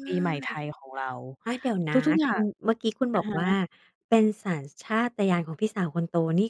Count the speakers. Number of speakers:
2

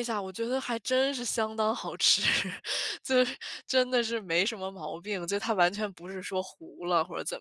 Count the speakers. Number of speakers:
1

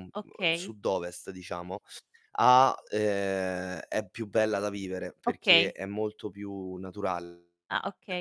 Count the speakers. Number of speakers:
2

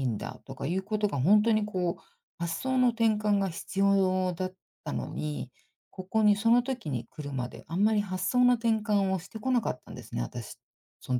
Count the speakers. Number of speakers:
1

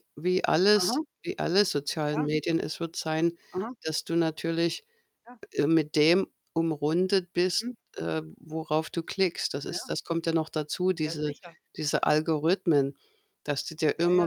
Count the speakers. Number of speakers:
2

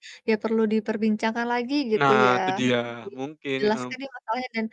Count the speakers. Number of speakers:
2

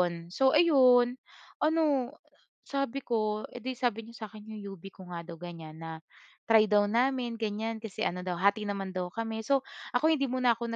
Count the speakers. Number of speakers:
1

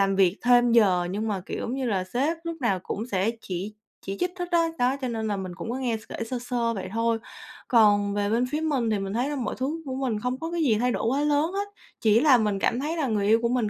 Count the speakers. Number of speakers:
1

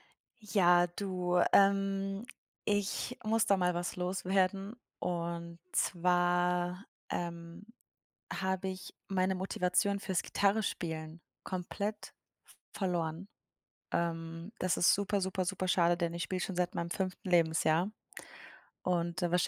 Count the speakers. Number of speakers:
1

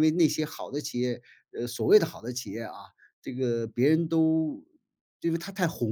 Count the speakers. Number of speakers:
1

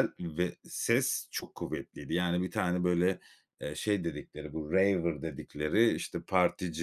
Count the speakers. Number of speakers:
1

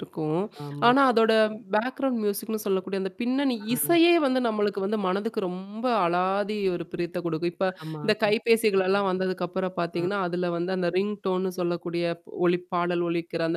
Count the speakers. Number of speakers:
2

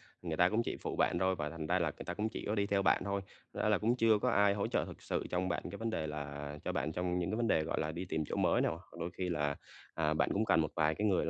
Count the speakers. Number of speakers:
1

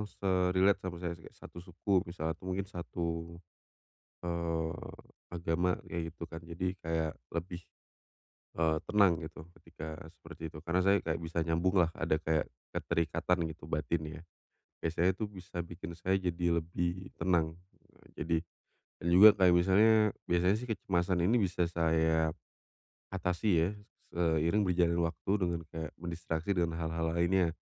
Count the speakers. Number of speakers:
1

